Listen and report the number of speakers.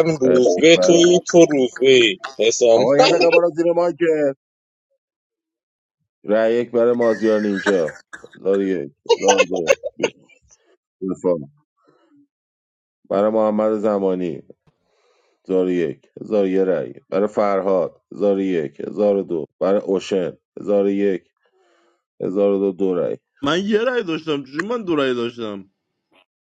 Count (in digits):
3